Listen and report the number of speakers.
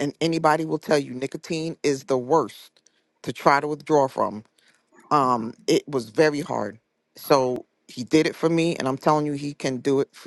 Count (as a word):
one